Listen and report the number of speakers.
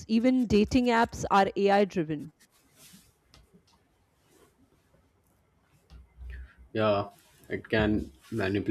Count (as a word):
two